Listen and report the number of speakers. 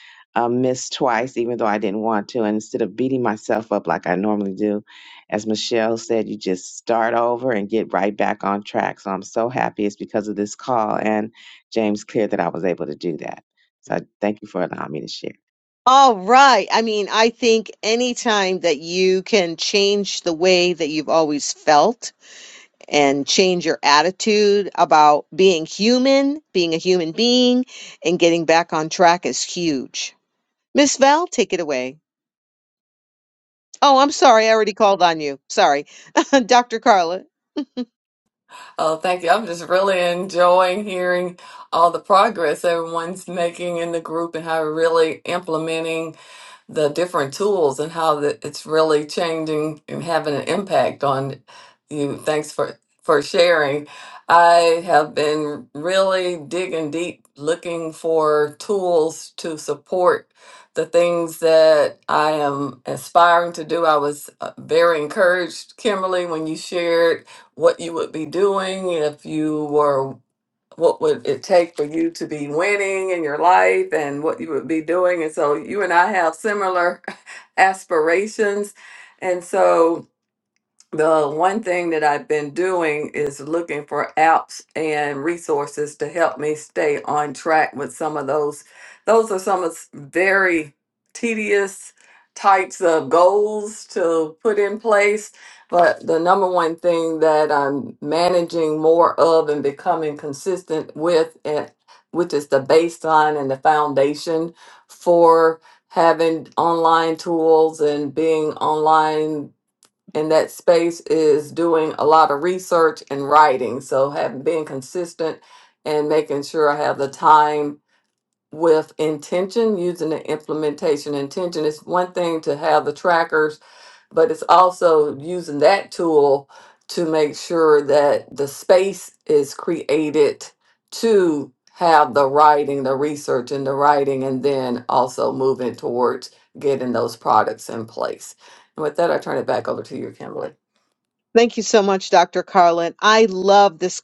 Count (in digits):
3